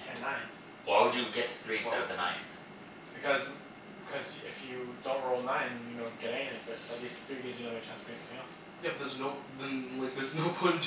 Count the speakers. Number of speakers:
3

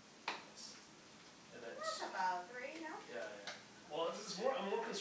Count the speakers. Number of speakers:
2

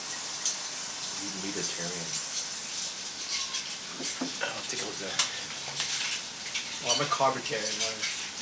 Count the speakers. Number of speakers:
2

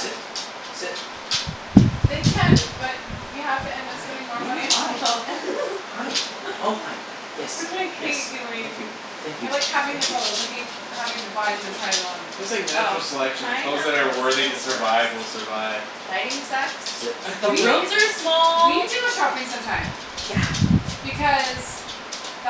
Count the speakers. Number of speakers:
4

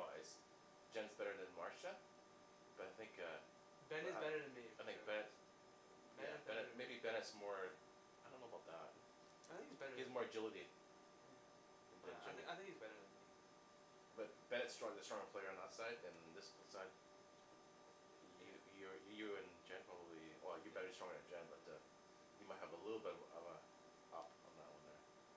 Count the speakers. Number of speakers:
2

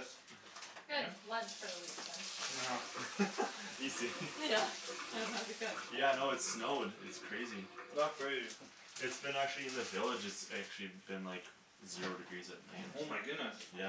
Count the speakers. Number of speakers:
3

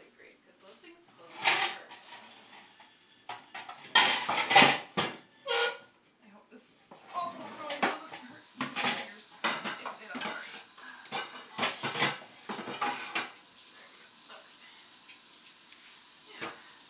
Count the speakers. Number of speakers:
2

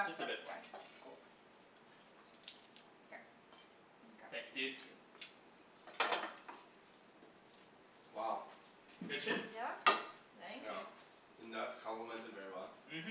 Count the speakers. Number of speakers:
3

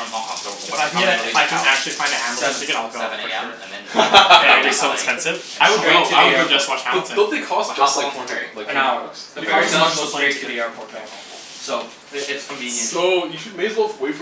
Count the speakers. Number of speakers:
4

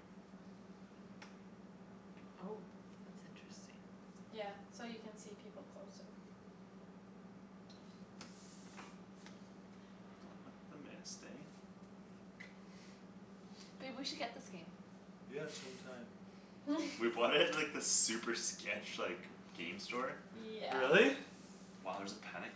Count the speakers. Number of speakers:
4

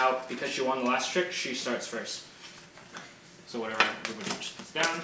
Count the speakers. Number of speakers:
1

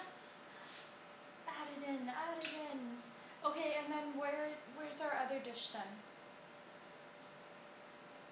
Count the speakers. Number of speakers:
1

